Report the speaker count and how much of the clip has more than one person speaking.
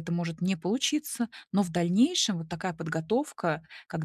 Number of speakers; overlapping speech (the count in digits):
1, no overlap